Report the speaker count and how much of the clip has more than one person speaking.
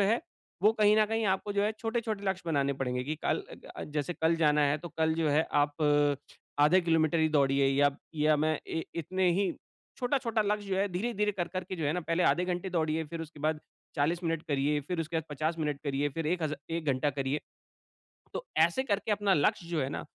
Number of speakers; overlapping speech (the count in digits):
1, no overlap